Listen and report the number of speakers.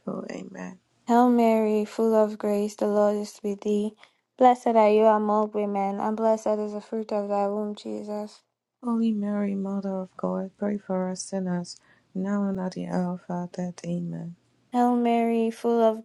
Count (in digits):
2